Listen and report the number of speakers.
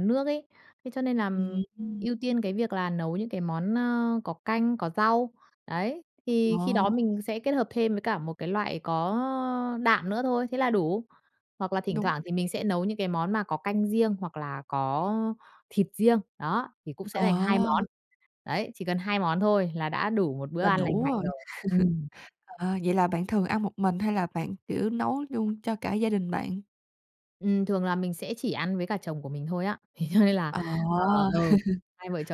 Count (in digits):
2